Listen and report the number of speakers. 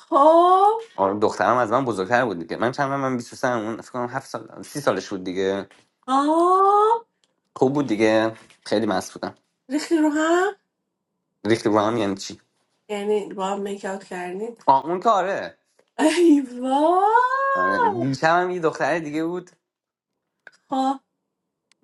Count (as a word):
two